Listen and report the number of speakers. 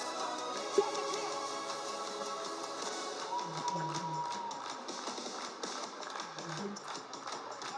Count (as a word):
zero